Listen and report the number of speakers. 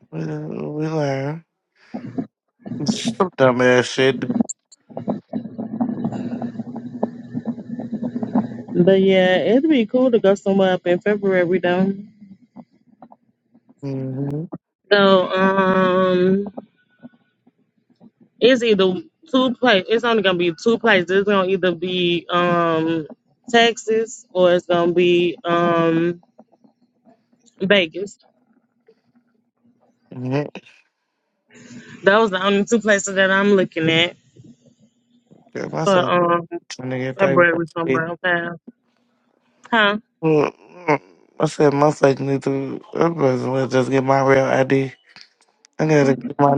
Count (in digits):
2